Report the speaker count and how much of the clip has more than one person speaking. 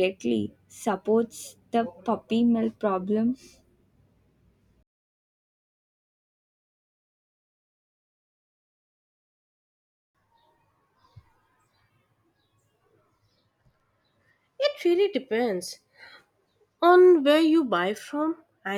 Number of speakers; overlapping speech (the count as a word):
two, no overlap